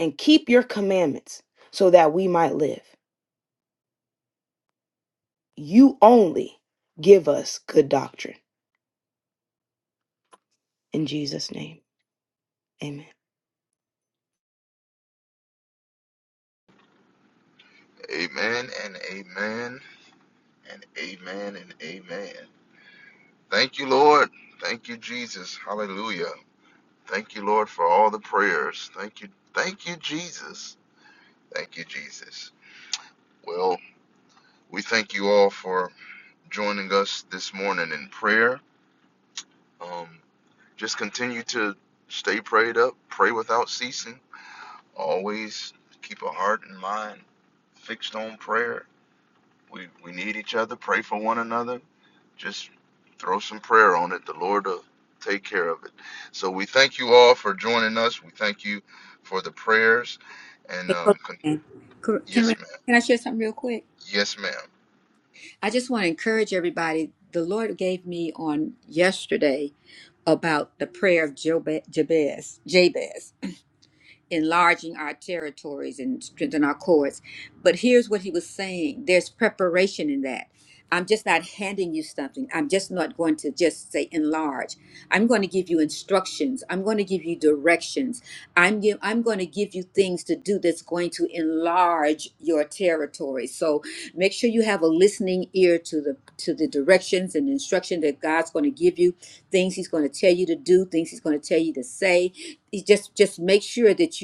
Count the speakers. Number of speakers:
3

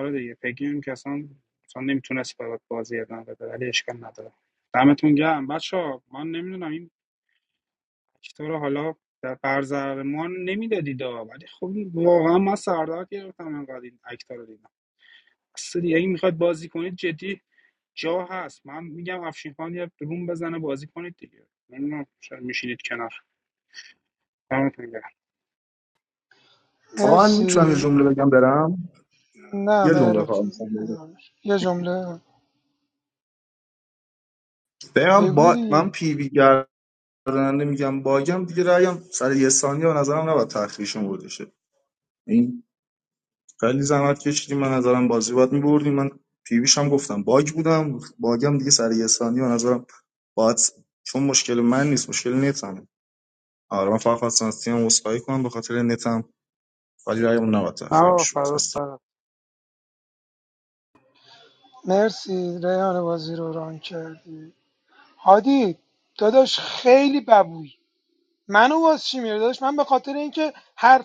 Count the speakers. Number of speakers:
3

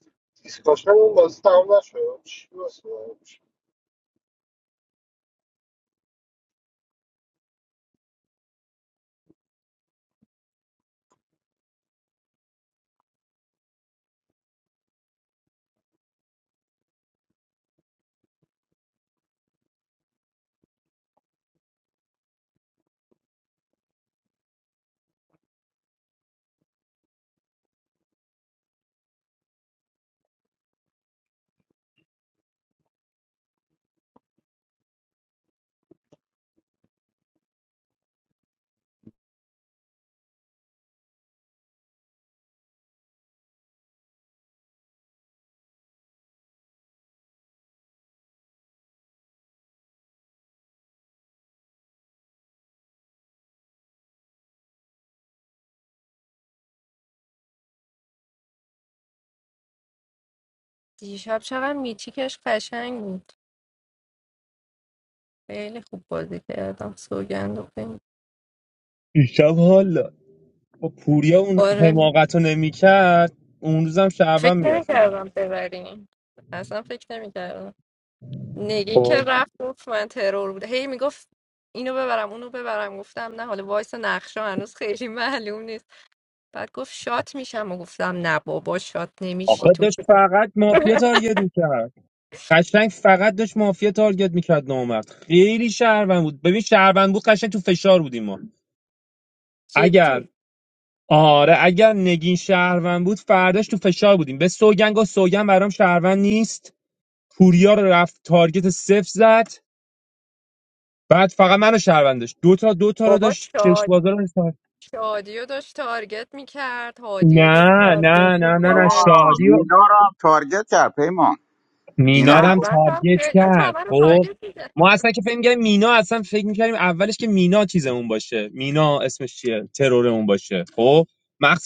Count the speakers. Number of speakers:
4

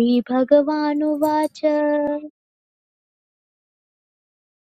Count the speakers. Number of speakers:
1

